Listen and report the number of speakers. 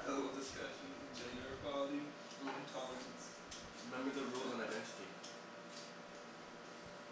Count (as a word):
two